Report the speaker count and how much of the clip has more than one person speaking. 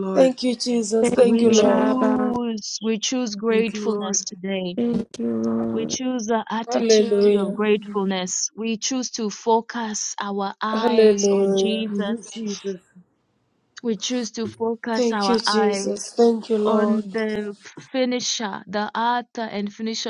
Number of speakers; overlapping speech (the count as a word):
four, about 31%